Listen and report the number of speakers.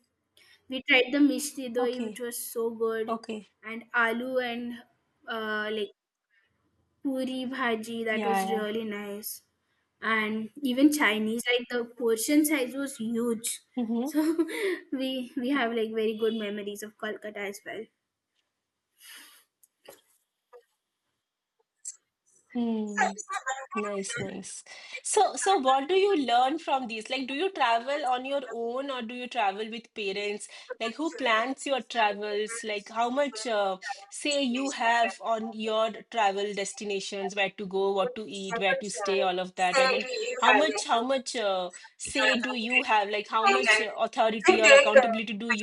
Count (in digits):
2